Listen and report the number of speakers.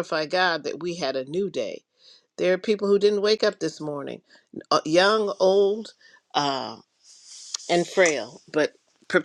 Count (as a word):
one